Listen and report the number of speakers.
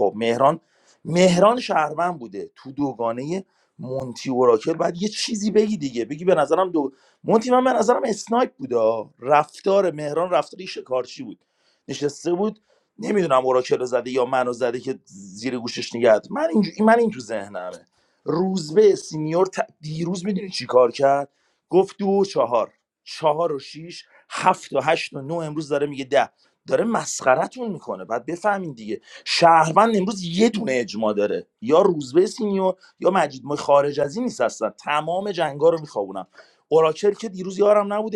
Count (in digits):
1